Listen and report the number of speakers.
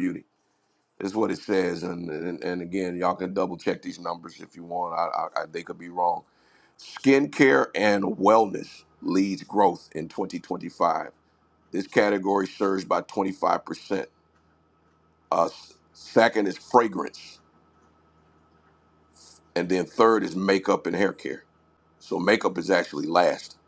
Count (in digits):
1